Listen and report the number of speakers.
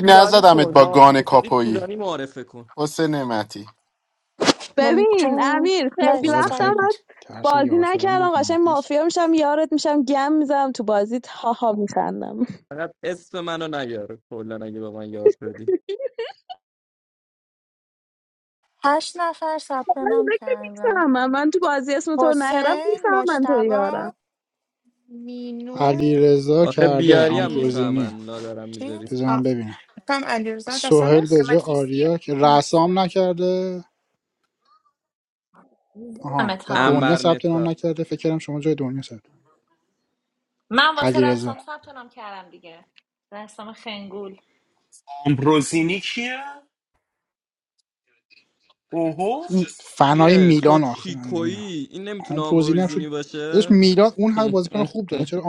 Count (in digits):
7